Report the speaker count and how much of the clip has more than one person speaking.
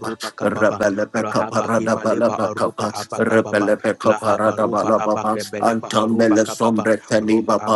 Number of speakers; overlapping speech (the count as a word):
two, about 87%